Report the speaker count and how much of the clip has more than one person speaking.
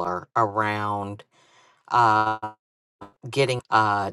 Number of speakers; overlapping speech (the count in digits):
1, no overlap